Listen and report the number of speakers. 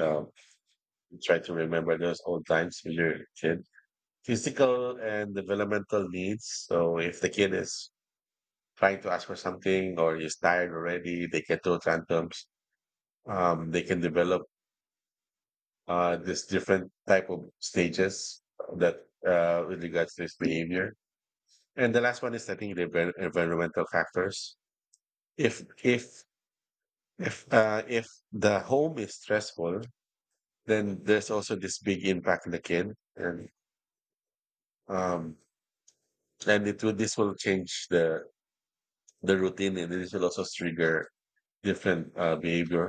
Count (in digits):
1